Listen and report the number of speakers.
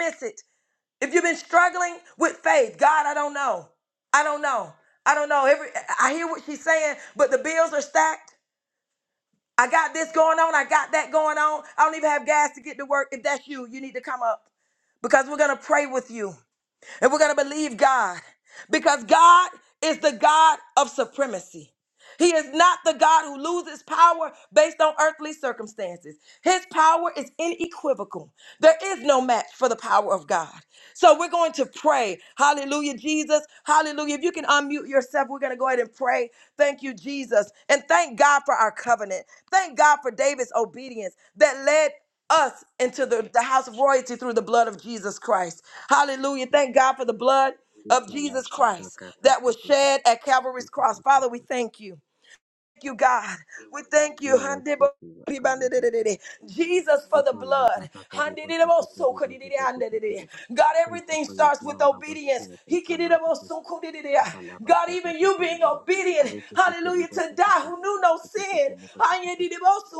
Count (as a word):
two